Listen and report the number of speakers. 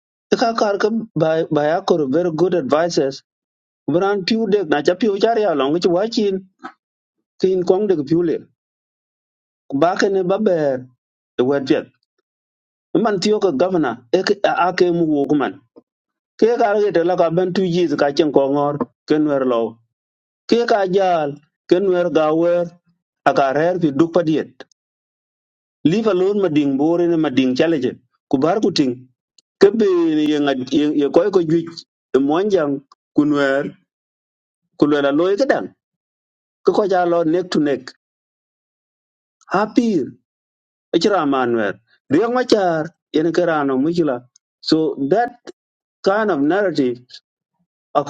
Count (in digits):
1